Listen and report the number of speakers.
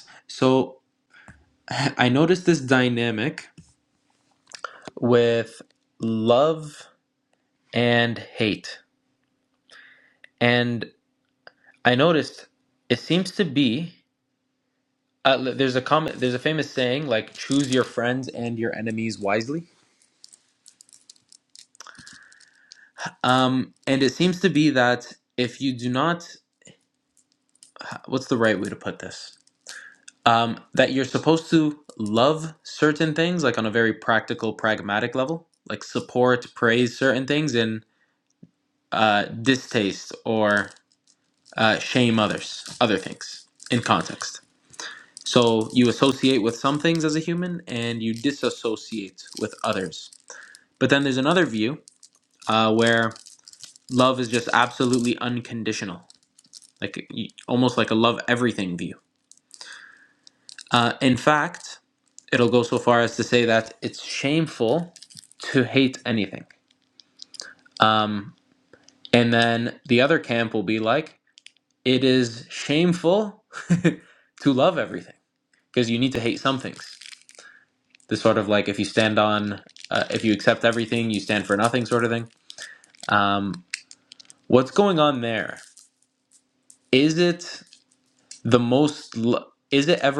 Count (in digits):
1